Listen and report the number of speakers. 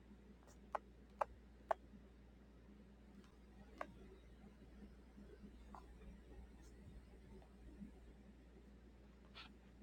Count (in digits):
0